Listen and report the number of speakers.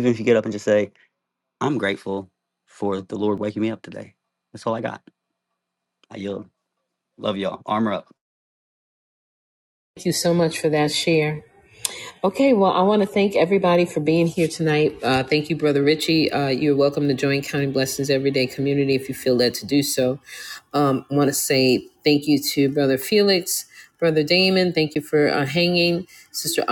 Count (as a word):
two